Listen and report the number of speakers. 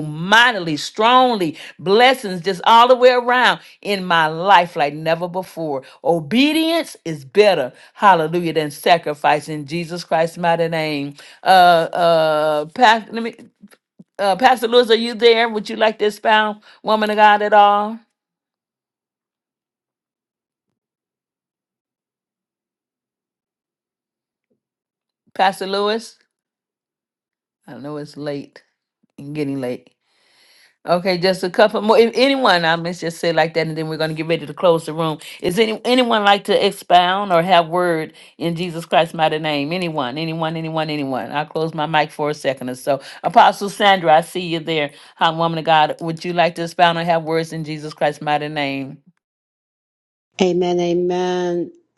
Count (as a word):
two